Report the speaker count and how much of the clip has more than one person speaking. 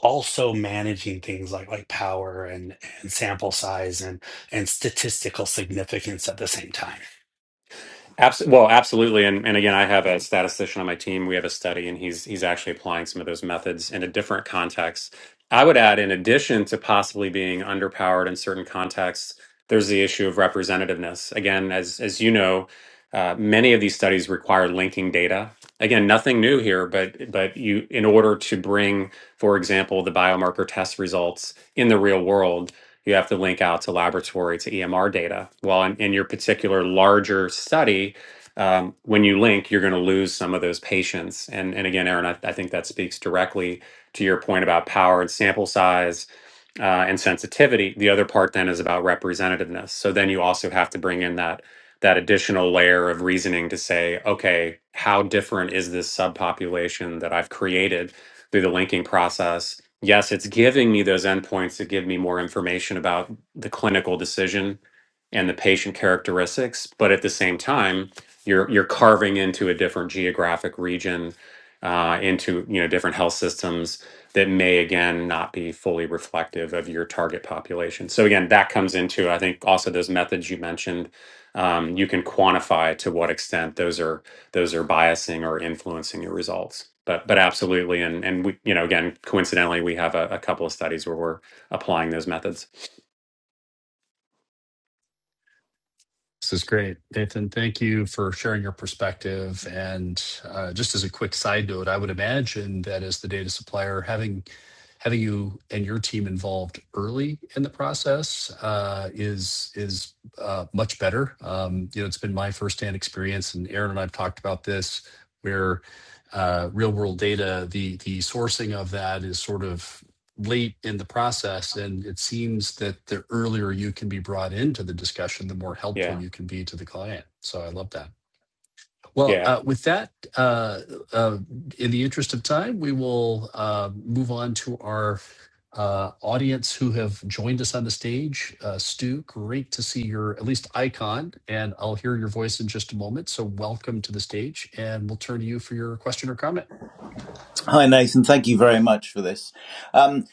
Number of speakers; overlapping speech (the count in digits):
4, under 1%